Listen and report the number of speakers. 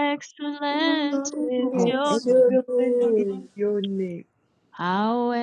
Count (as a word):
three